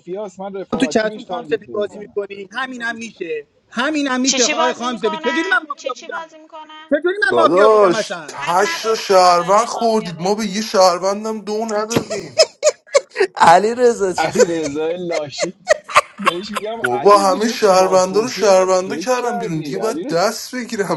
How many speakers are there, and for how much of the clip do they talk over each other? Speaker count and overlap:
five, about 50%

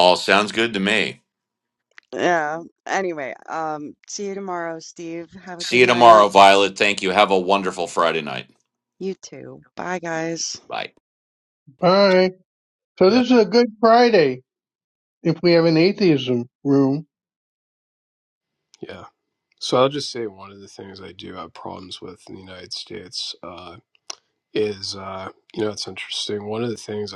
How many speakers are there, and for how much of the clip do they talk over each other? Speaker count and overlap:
four, about 3%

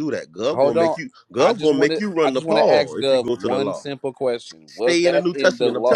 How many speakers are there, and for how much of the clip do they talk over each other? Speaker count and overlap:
two, about 67%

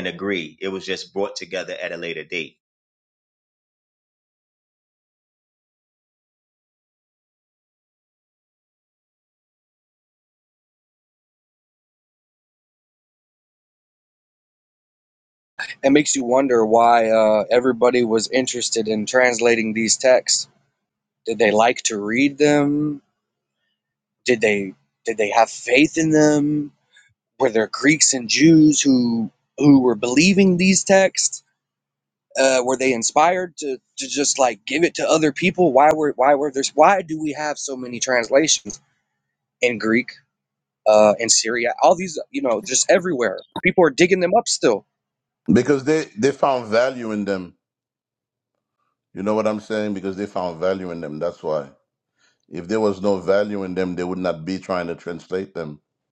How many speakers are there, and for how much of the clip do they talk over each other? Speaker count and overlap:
three, no overlap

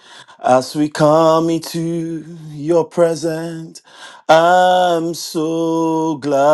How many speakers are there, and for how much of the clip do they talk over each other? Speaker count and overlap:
one, no overlap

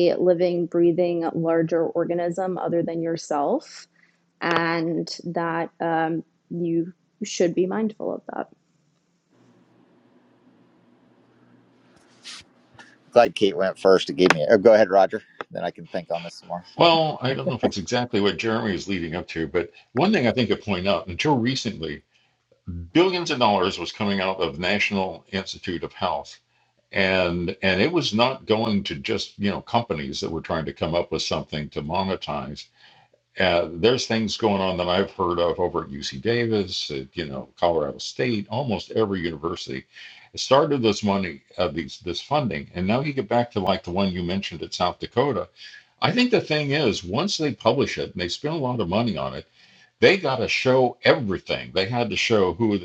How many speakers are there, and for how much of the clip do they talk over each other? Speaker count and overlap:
three, no overlap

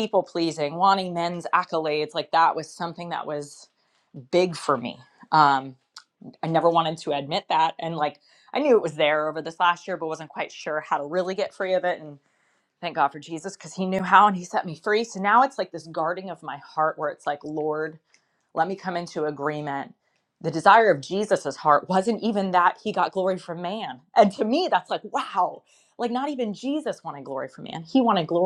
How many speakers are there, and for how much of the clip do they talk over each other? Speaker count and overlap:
one, no overlap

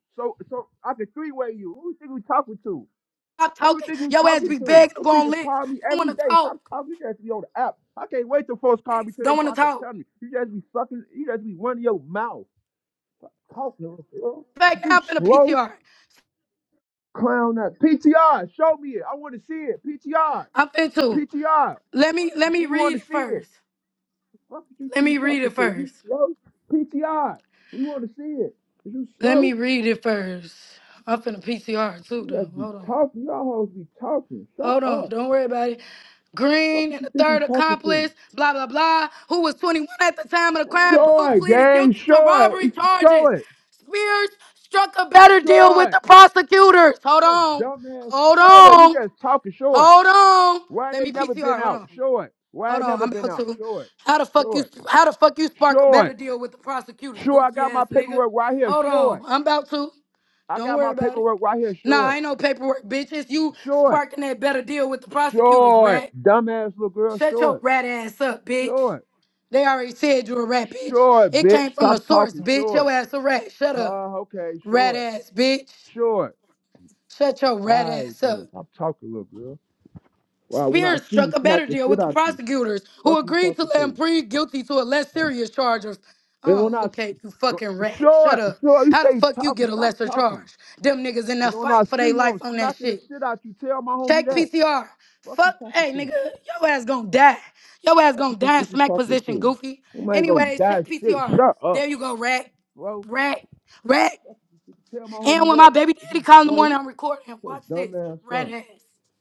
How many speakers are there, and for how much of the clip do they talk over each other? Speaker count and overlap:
two, about 32%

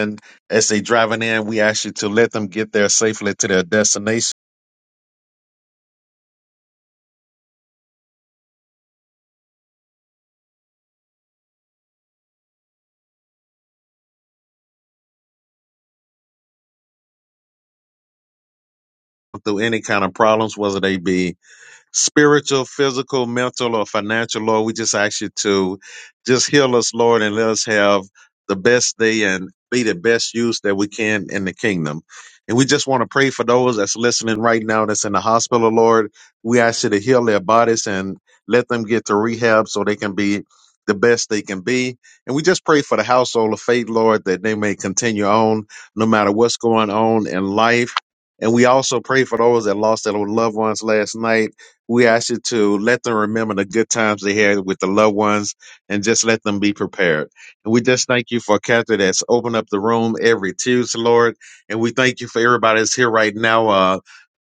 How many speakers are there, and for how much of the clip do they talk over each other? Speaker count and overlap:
one, no overlap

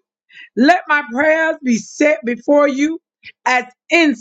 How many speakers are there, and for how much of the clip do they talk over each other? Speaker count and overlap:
one, no overlap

